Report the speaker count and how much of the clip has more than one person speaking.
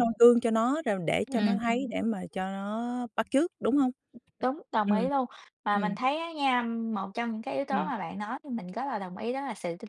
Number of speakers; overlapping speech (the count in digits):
2, about 10%